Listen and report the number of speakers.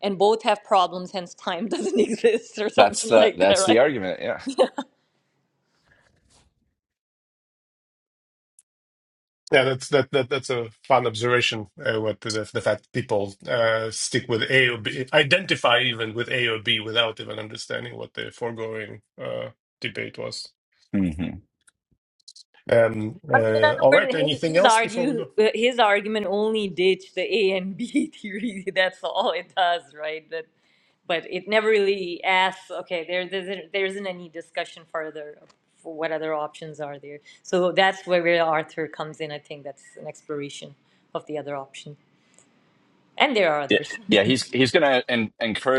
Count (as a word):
three